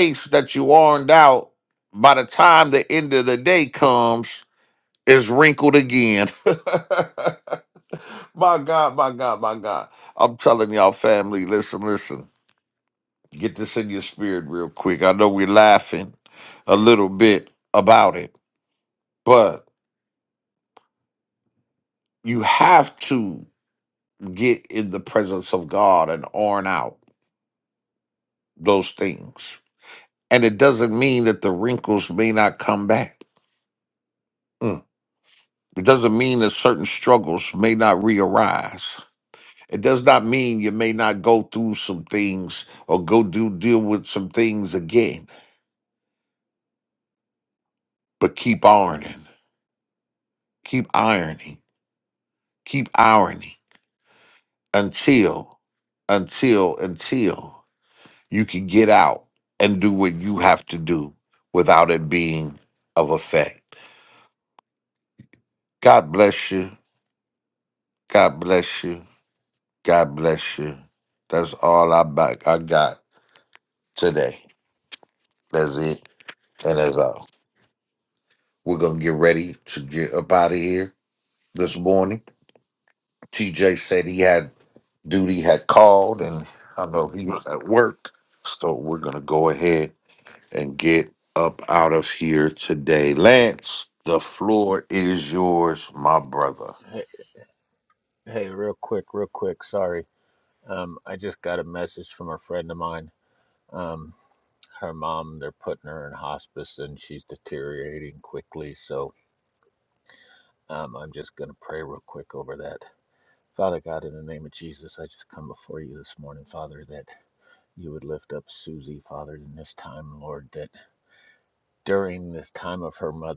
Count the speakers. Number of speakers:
2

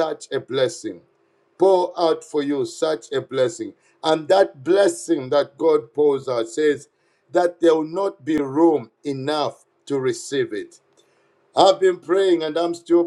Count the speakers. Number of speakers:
1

